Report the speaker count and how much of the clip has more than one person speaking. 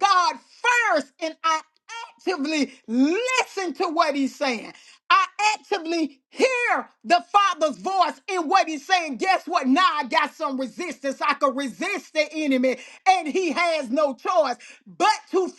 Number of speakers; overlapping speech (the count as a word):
one, no overlap